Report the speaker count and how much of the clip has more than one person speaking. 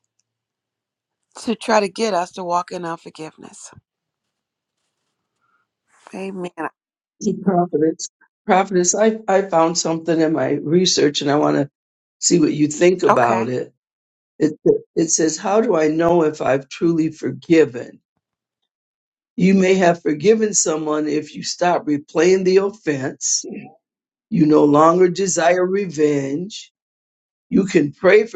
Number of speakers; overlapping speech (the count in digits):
2, about 2%